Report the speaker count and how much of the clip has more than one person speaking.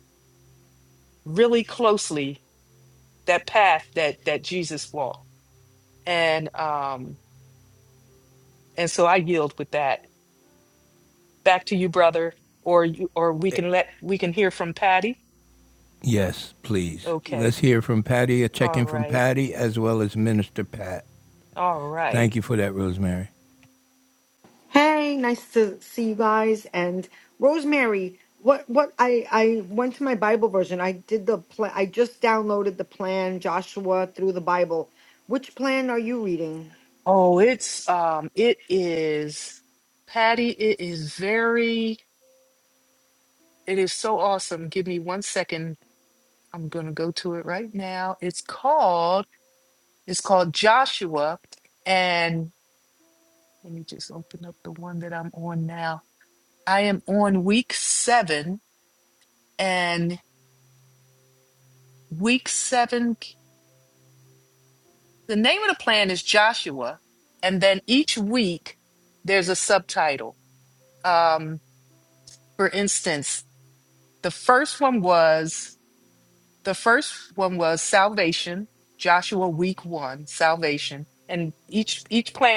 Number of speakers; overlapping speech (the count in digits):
3, about 2%